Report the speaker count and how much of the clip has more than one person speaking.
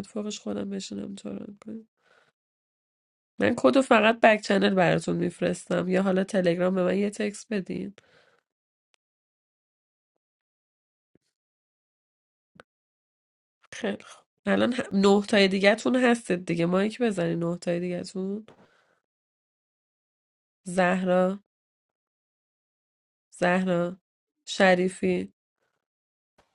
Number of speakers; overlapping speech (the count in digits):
1, no overlap